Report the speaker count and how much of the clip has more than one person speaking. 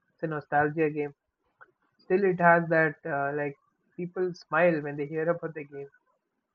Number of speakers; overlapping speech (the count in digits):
1, no overlap